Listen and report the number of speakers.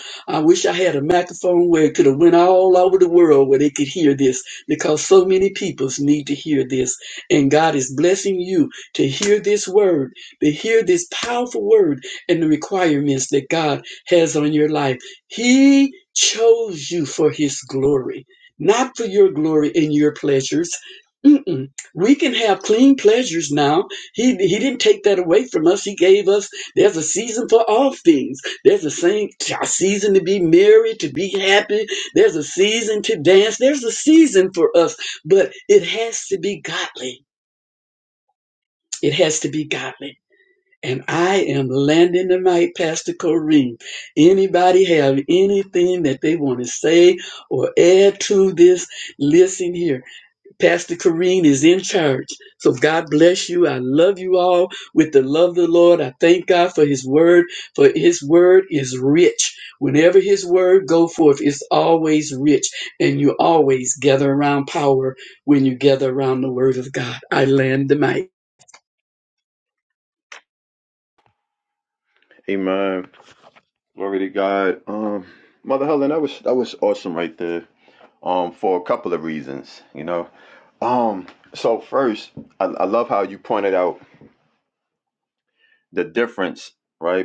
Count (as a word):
two